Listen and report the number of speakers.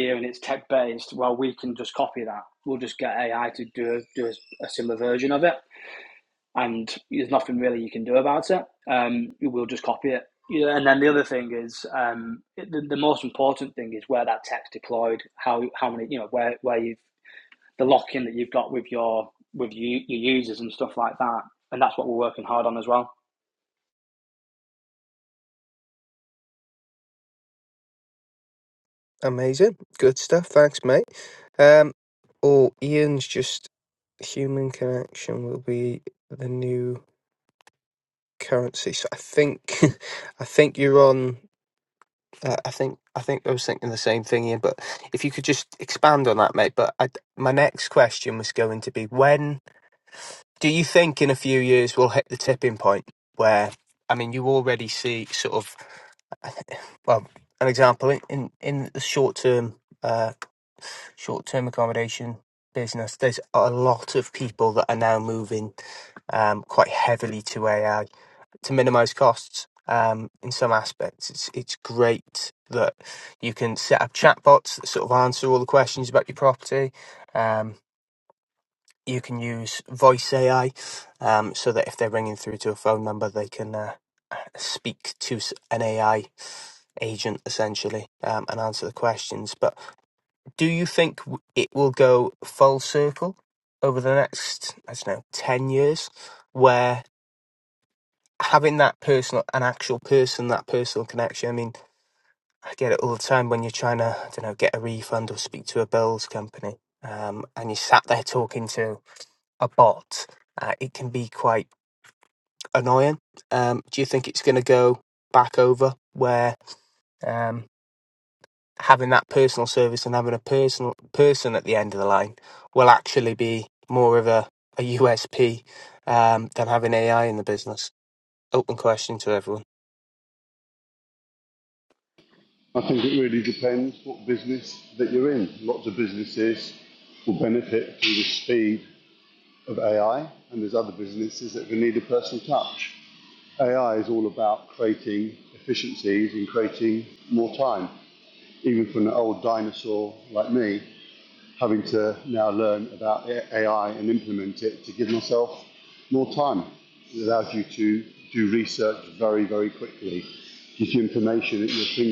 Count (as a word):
three